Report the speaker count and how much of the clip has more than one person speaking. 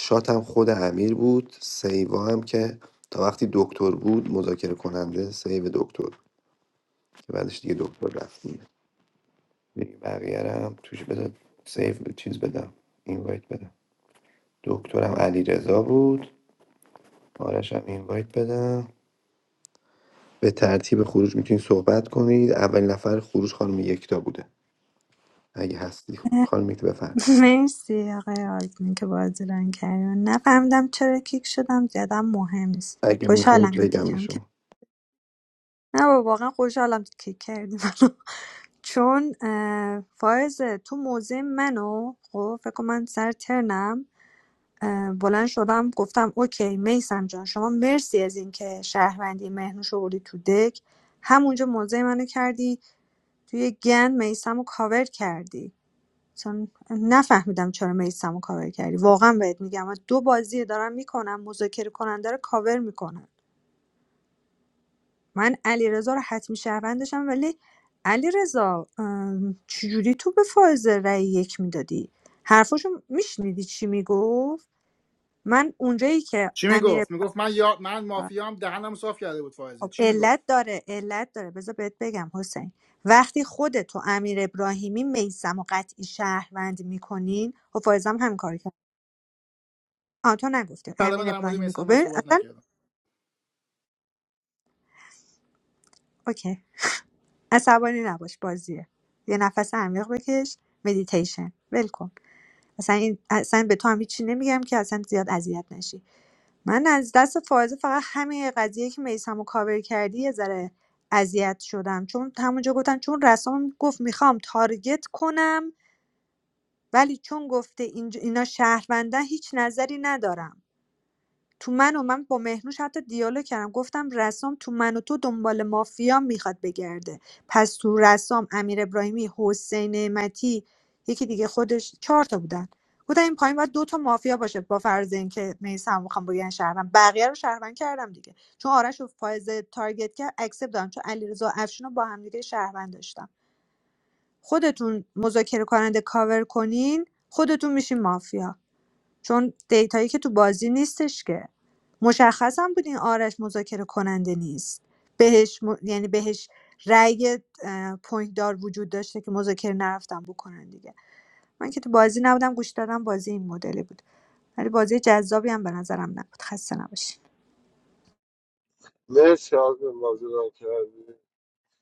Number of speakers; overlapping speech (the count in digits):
4, about 2%